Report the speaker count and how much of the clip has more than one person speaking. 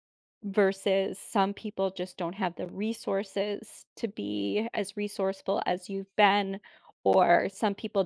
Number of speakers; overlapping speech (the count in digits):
1, no overlap